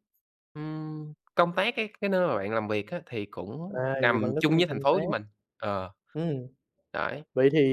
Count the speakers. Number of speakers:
2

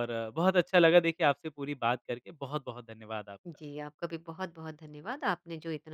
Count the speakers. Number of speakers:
2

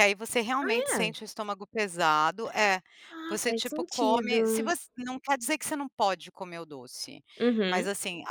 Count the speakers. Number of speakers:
2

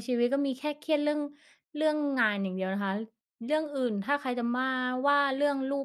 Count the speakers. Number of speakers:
1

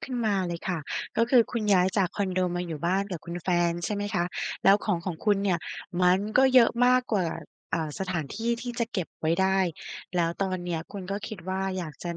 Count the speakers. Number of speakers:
1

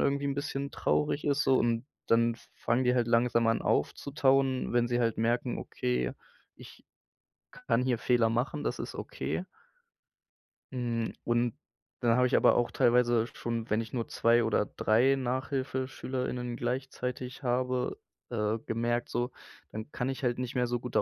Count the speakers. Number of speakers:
1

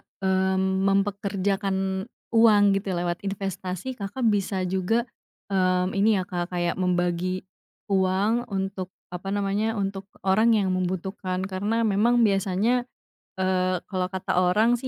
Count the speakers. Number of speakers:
1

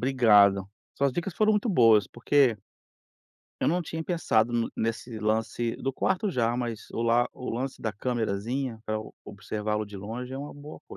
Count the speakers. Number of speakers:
1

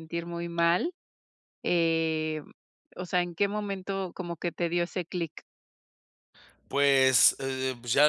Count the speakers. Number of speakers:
2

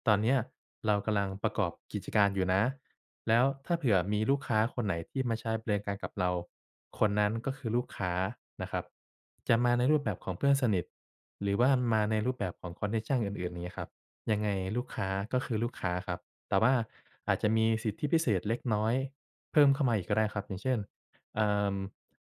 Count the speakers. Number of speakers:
1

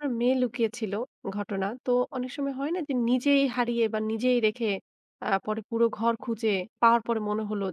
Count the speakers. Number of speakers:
1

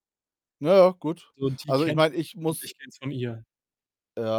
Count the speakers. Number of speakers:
2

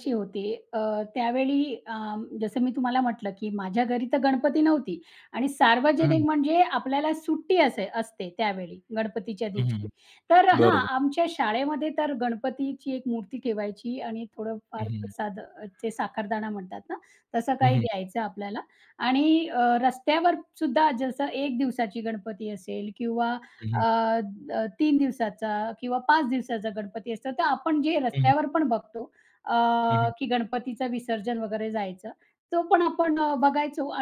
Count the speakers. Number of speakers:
2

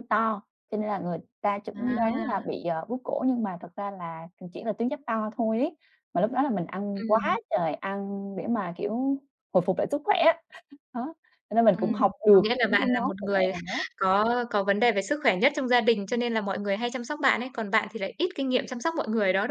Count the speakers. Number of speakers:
2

